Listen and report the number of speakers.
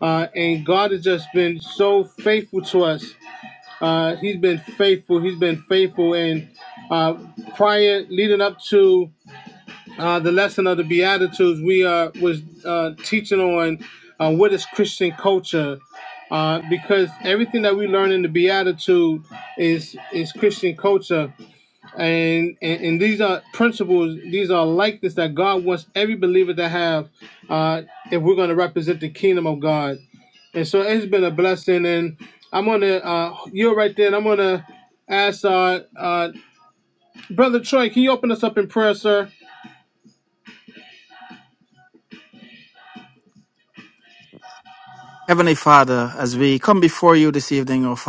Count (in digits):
2